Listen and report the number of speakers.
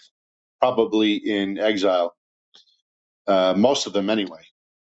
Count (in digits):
1